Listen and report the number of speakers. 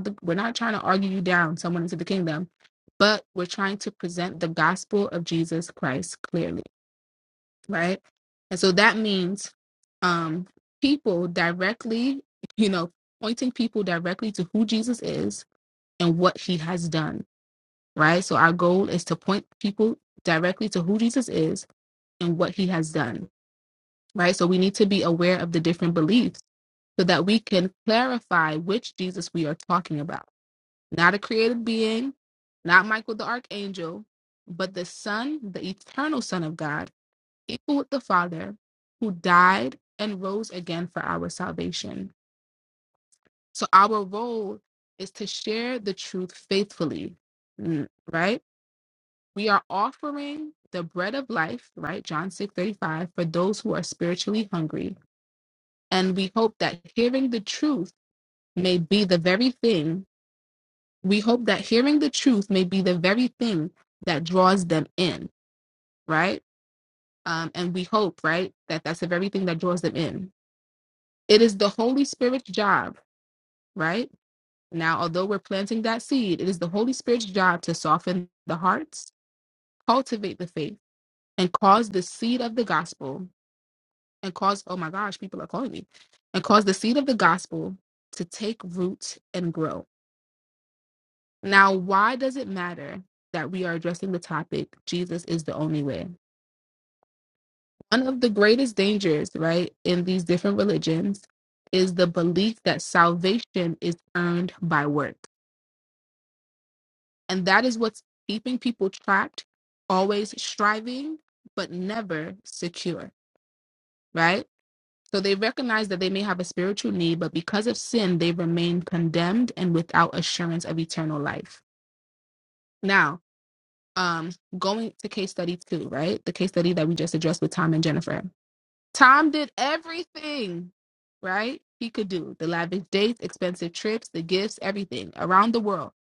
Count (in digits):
1